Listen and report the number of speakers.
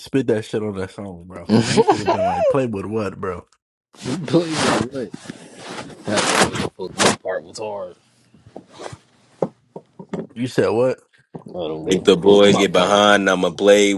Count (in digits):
3